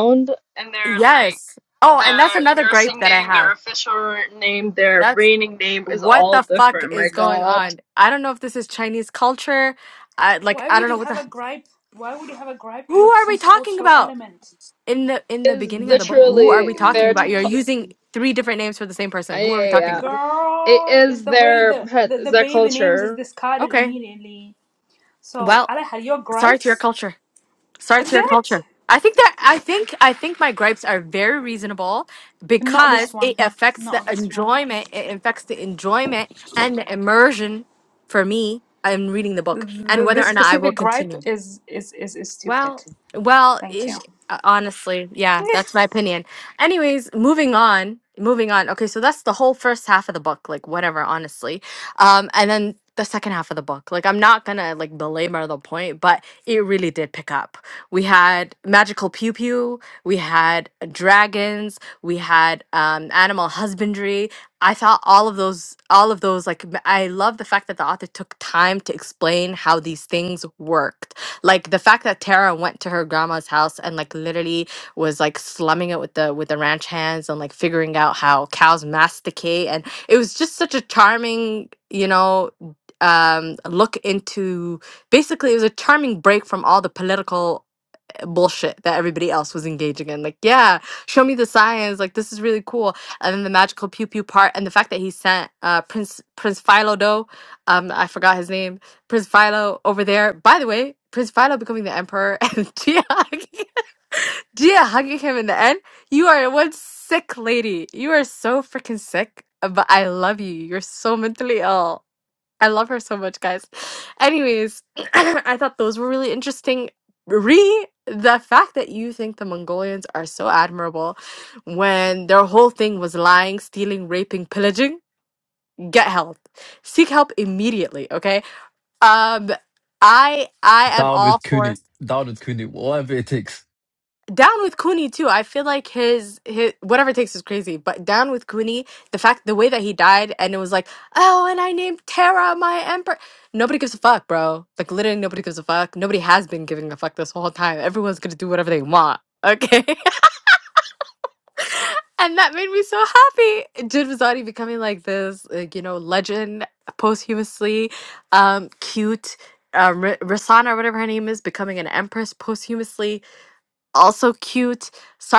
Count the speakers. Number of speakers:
4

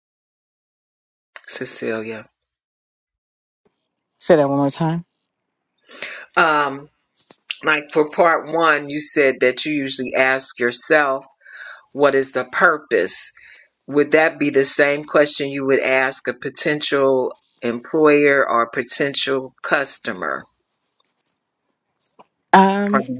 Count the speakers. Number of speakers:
2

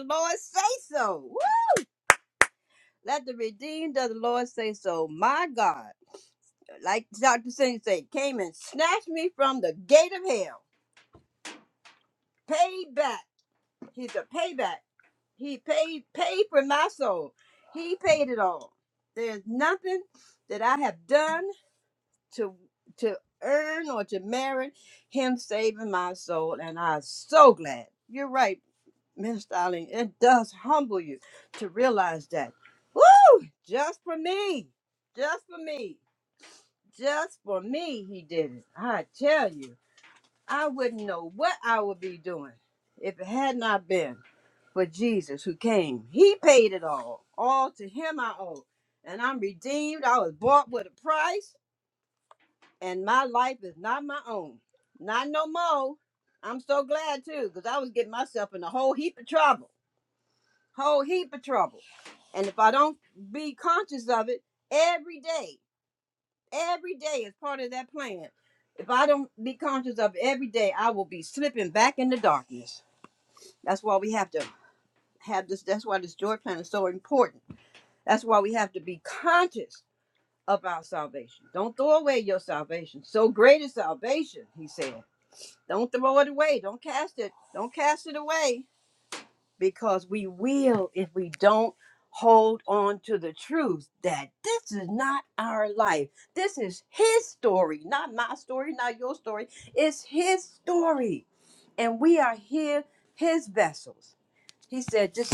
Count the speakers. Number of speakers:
1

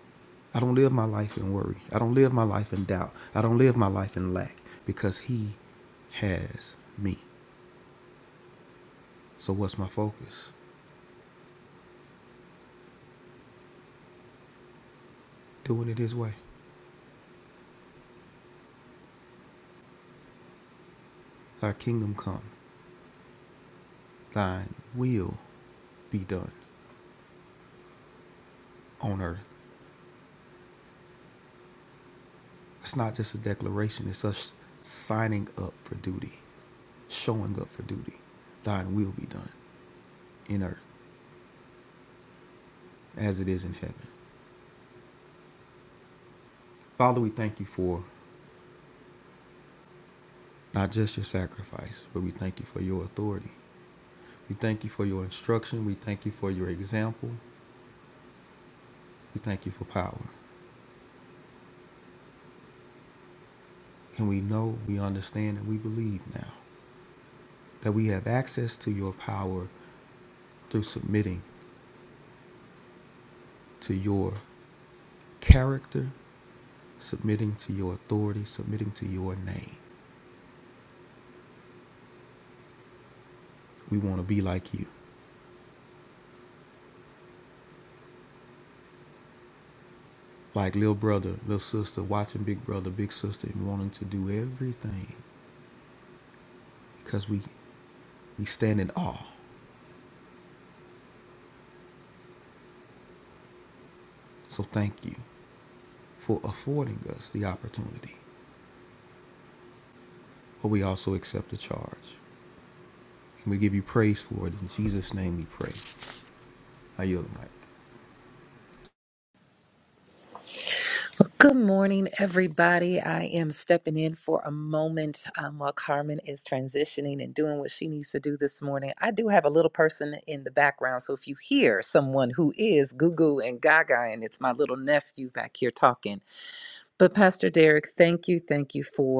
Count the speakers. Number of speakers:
2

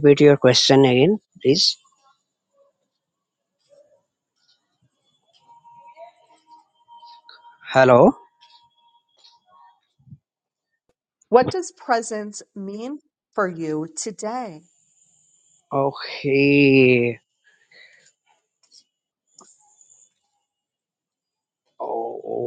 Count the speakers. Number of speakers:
2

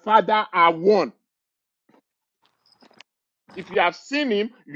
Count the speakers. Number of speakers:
1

